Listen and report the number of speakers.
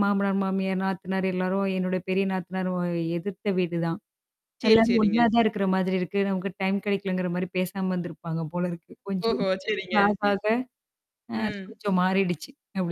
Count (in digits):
2